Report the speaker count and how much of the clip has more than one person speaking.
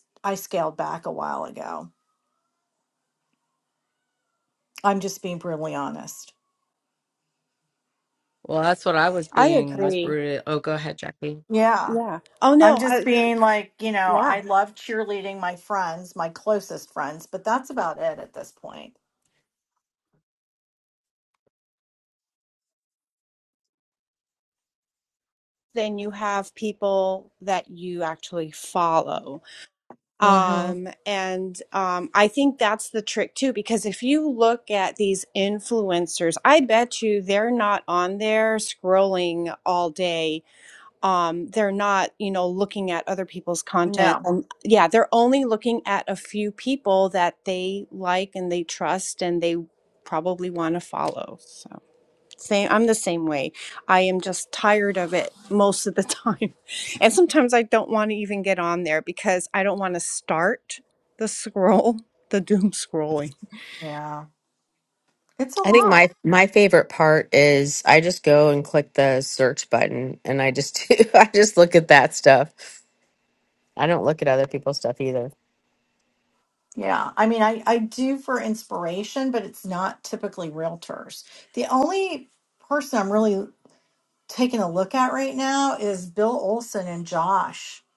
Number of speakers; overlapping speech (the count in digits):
4, about 3%